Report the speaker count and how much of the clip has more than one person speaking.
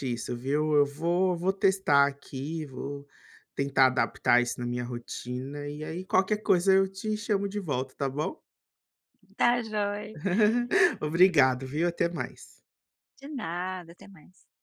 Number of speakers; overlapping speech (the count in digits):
2, no overlap